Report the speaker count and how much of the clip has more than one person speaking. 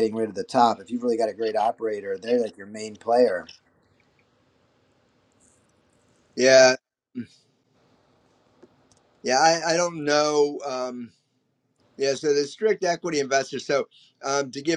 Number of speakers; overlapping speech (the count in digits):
2, no overlap